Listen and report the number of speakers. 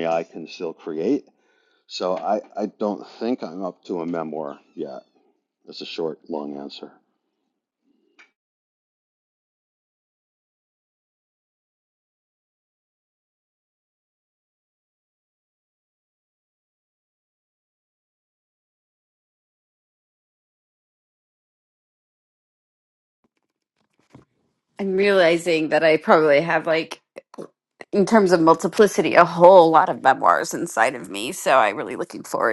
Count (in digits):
2